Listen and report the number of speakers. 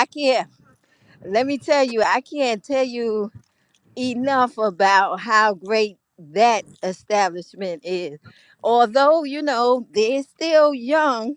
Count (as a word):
one